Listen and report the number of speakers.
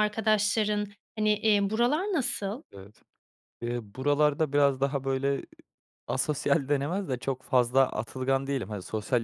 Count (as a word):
two